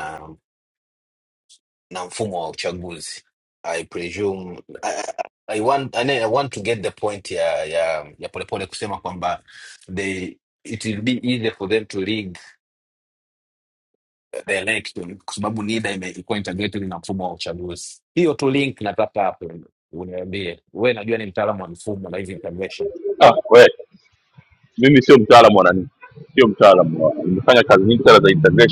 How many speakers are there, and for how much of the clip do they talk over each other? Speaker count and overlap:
two, no overlap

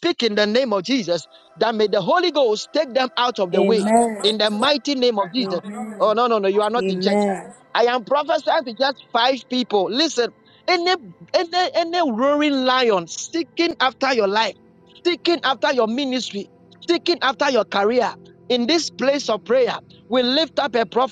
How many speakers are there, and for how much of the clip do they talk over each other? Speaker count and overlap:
two, about 6%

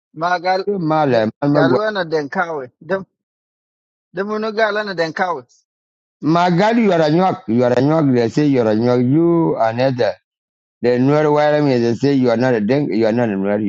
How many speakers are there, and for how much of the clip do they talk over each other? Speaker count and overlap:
two, about 5%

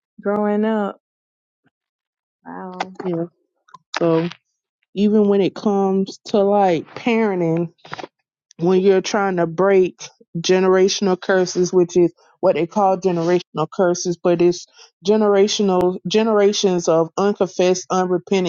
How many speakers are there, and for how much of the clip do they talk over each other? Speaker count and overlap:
two, no overlap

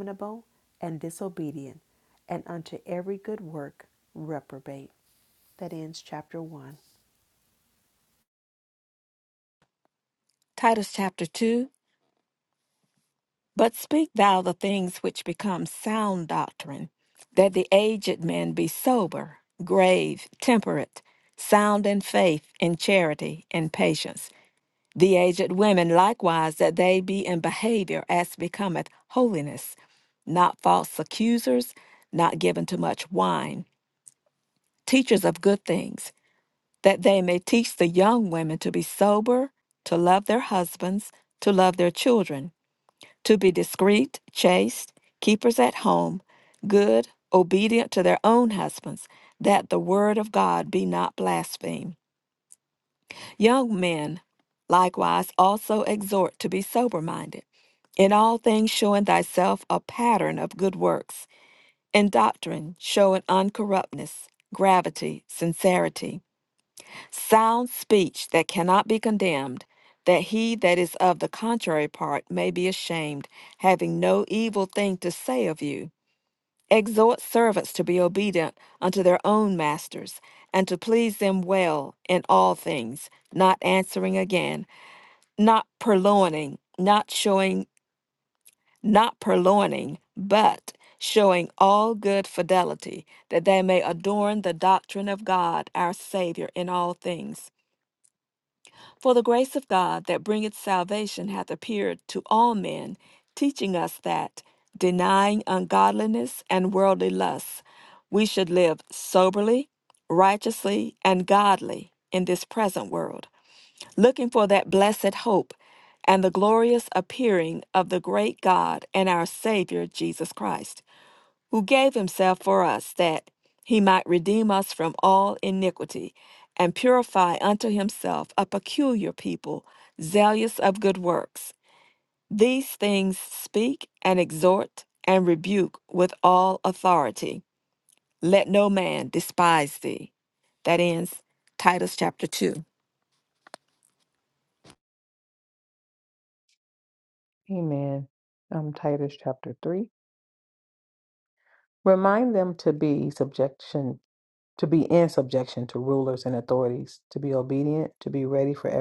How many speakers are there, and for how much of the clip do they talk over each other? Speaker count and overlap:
three, no overlap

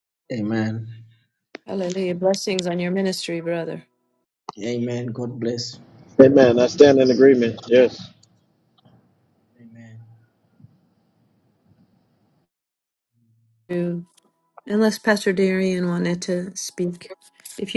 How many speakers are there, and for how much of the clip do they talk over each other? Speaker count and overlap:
three, no overlap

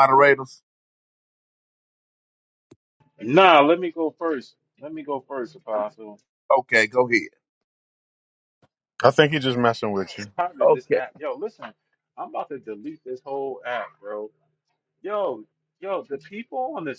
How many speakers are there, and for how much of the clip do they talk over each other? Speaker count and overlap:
three, no overlap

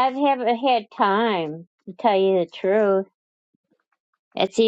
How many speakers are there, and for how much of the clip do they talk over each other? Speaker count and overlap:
one, no overlap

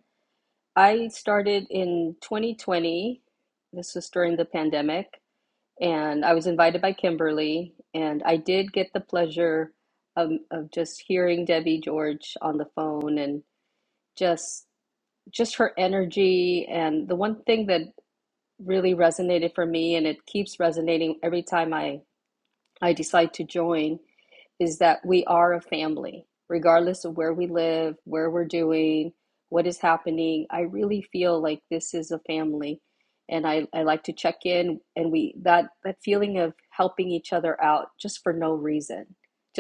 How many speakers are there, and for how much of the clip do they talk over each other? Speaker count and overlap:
one, no overlap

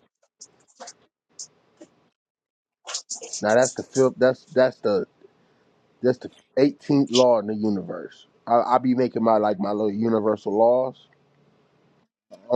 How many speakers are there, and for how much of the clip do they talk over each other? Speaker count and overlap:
one, no overlap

